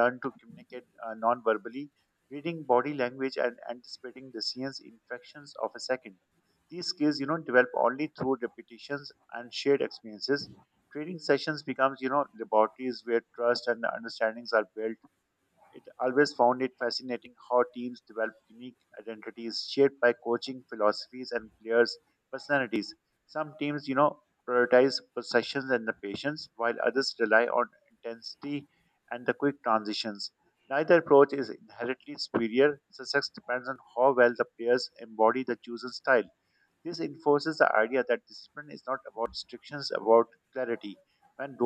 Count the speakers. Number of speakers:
one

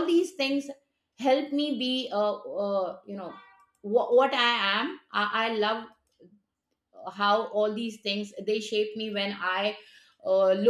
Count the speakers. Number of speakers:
one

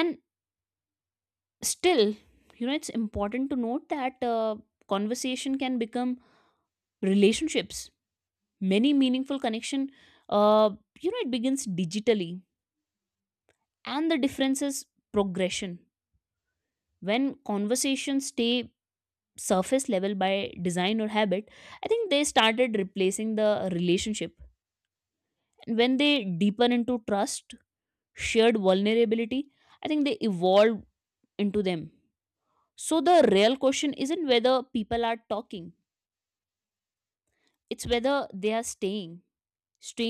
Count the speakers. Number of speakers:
one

